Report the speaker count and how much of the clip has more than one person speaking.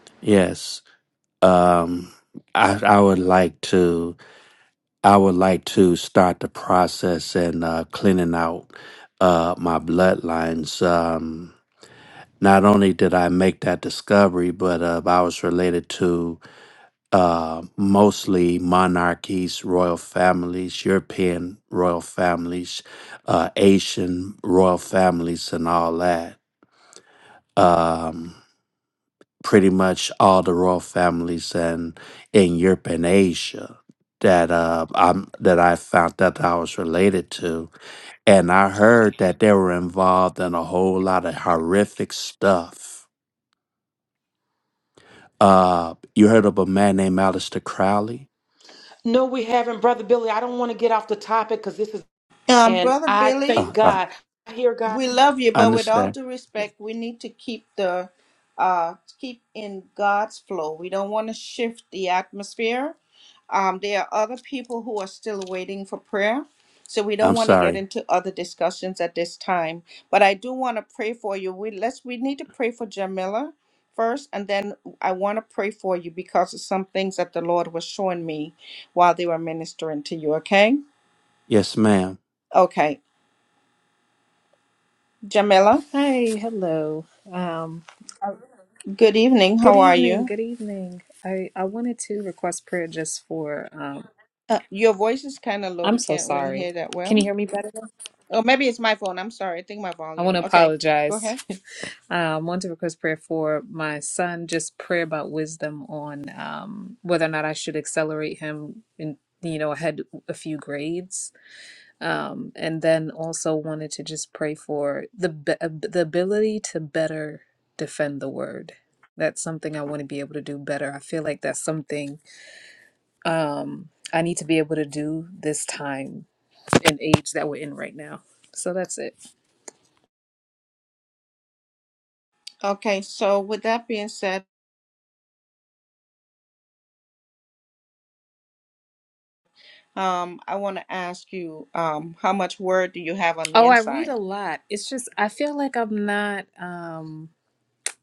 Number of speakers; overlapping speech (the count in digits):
4, about 4%